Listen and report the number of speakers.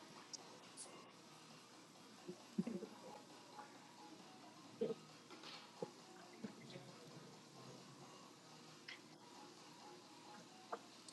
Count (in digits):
0